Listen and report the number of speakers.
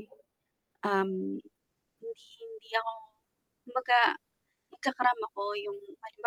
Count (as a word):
one